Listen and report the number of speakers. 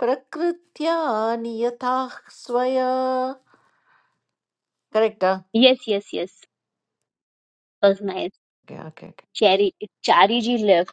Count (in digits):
2